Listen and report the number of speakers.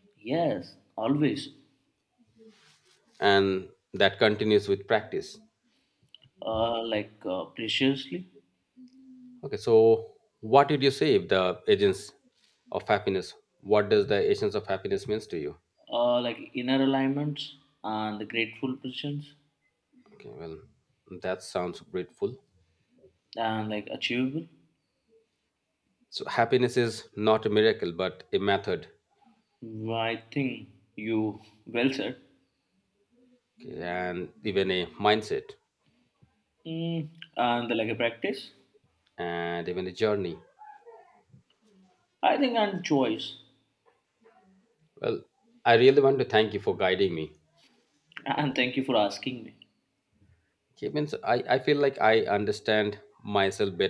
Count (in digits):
2